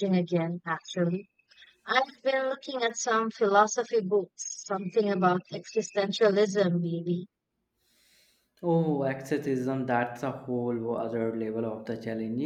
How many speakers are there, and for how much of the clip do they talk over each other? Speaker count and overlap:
2, no overlap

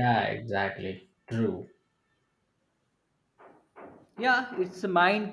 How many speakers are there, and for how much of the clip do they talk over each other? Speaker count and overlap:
2, no overlap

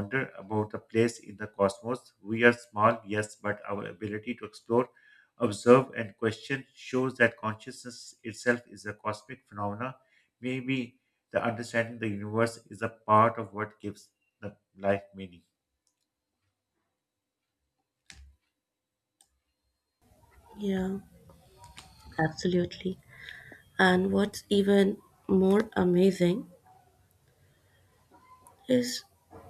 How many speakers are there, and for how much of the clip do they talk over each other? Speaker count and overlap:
2, no overlap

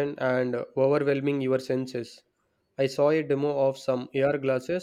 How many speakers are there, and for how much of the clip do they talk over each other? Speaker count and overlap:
1, no overlap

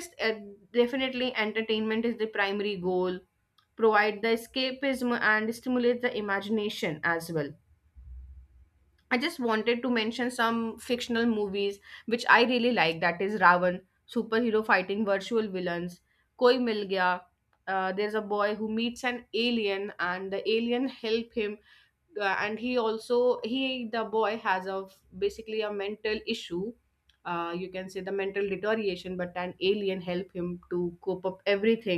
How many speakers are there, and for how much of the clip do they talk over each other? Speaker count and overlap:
1, no overlap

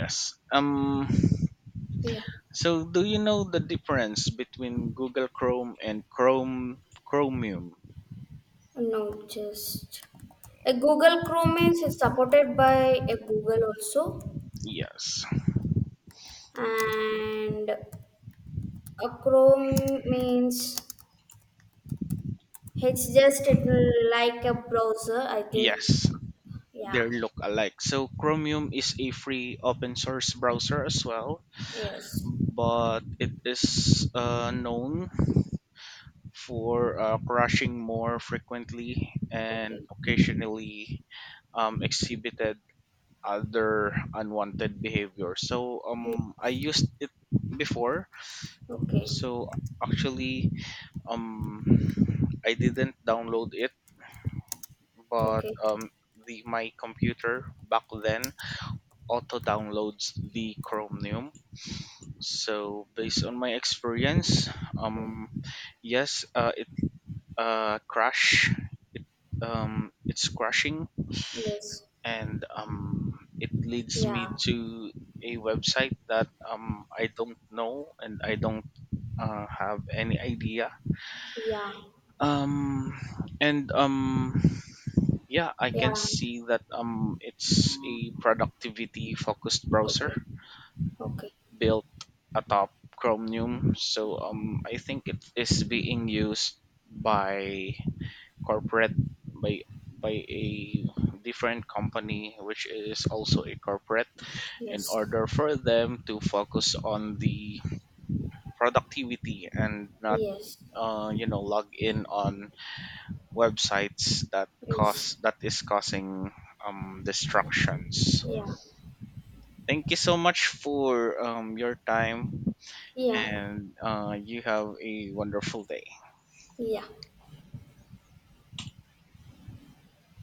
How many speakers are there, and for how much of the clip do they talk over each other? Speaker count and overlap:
2, about 3%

